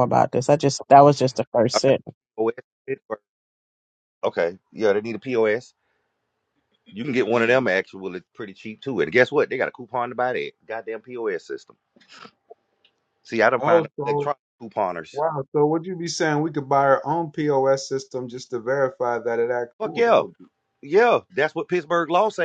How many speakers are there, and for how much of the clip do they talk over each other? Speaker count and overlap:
three, about 6%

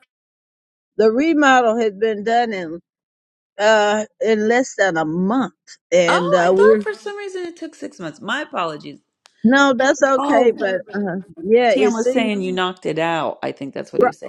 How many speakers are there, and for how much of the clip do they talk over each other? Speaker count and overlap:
two, about 13%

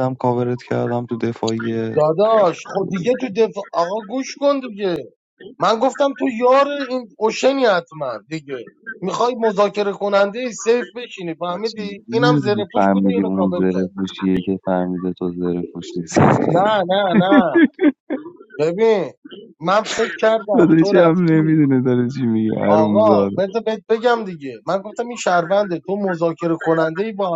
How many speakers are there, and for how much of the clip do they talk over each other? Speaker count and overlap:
two, about 17%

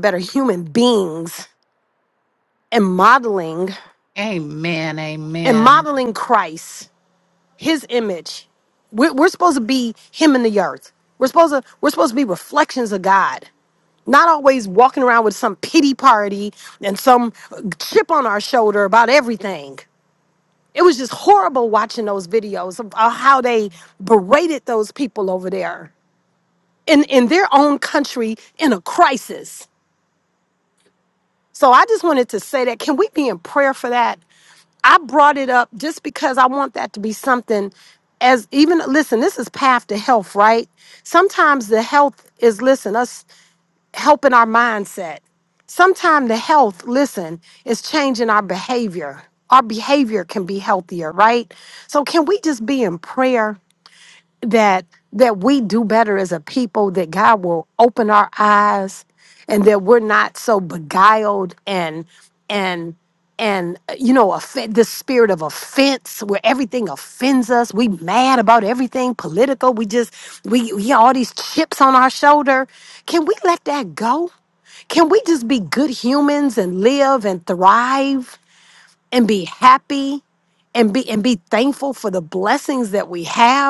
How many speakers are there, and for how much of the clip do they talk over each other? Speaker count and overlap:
two, about 1%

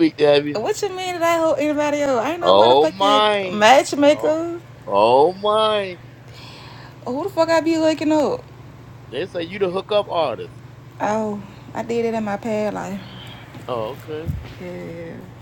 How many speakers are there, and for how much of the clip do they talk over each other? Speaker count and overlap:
two, about 10%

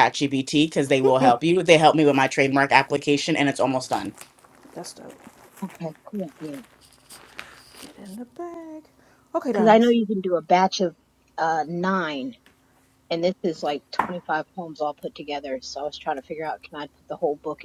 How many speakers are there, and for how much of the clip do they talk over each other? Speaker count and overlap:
three, about 1%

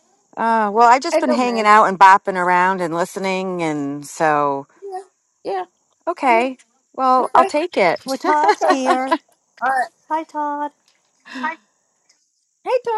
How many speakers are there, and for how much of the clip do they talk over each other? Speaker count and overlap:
three, about 11%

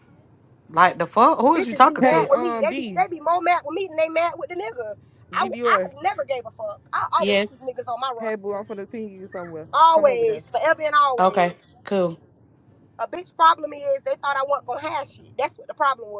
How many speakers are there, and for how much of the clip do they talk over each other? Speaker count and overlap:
three, about 21%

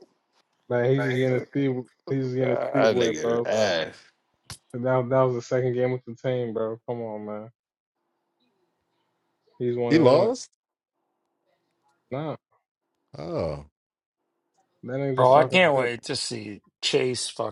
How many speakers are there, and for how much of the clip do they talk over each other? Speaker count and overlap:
four, about 13%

